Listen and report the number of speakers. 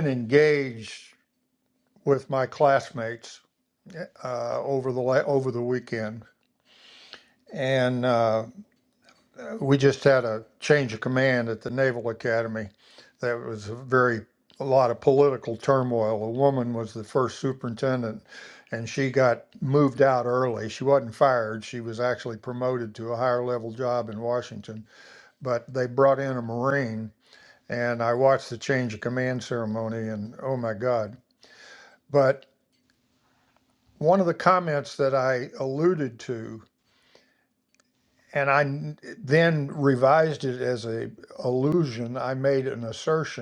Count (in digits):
1